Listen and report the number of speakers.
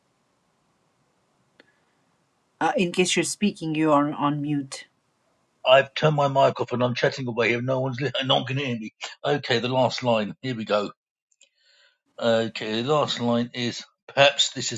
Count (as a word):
two